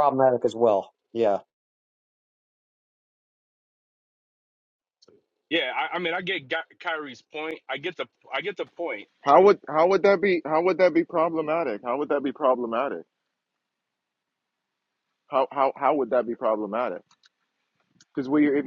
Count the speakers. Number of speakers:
3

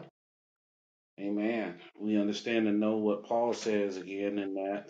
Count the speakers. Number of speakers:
1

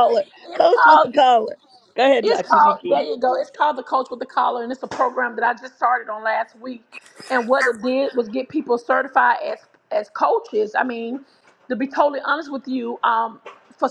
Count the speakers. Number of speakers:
2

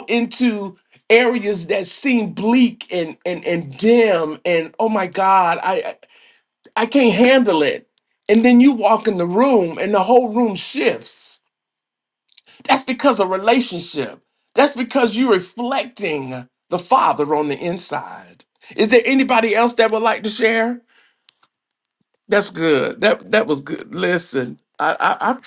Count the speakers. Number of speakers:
1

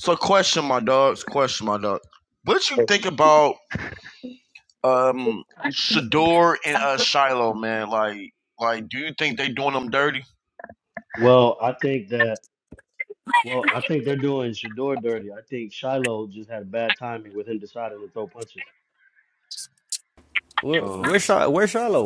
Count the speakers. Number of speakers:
3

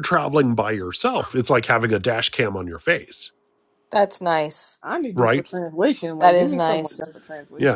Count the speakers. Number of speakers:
3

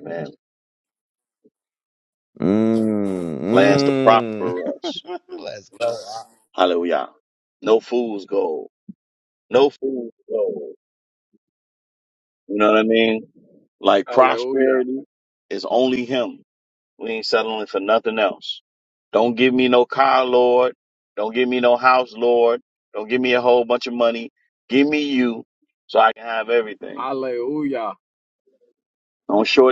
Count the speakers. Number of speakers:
3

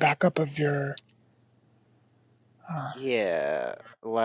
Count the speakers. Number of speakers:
2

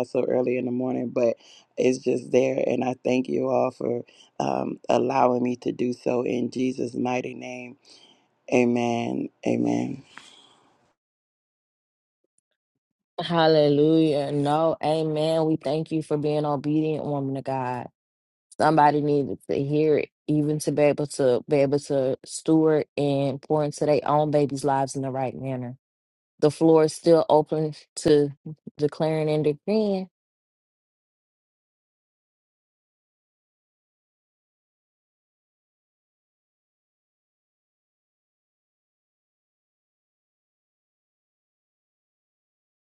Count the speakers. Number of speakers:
2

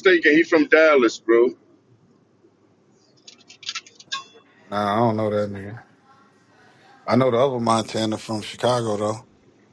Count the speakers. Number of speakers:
2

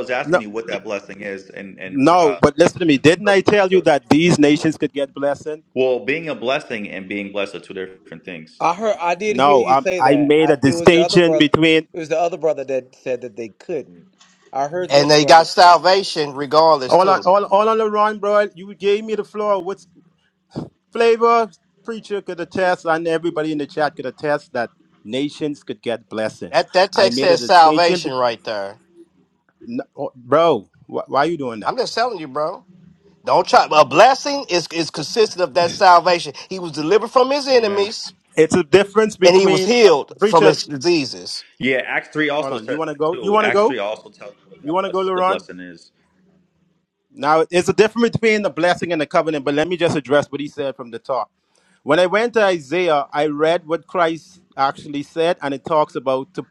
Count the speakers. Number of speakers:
4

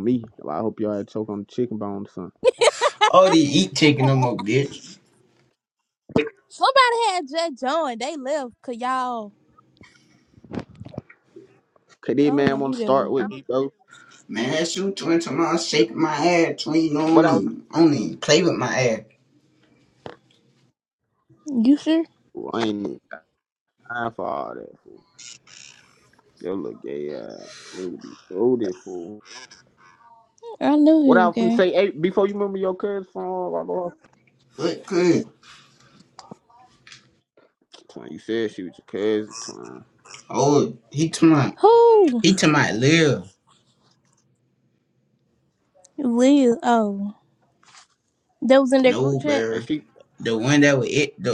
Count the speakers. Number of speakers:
3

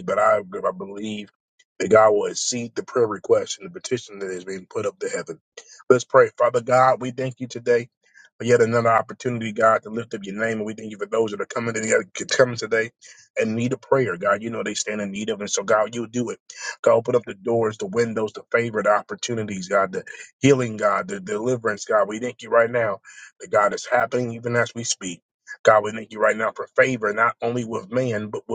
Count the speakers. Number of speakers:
1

